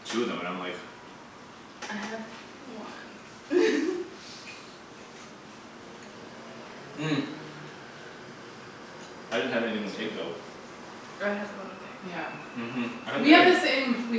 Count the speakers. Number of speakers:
3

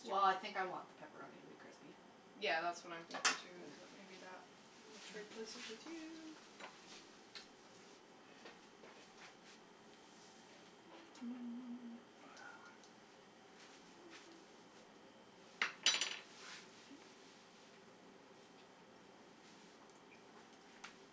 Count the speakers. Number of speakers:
2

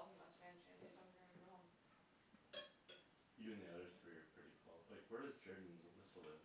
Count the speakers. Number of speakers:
2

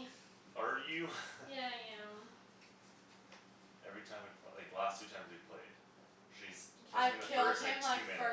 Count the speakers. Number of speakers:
2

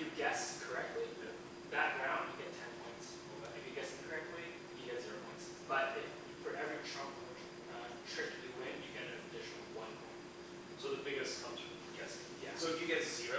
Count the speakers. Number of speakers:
2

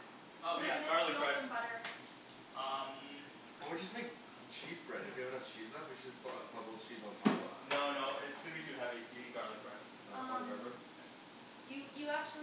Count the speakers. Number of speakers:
3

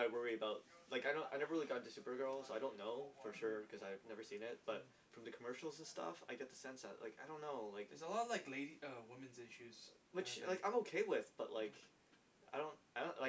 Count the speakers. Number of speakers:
2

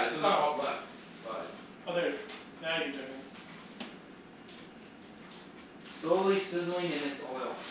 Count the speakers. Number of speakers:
3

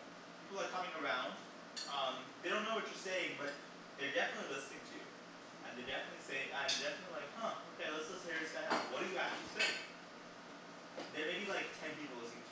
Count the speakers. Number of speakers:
1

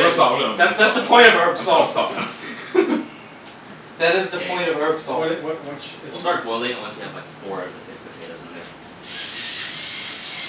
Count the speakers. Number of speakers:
4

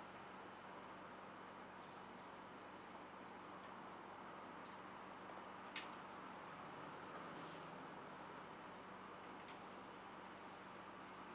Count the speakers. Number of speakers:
0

